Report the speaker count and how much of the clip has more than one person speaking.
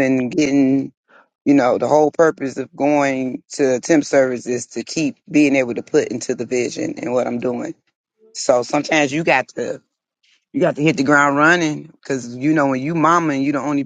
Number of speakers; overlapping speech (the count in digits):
1, no overlap